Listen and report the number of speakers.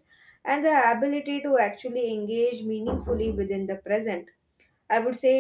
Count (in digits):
1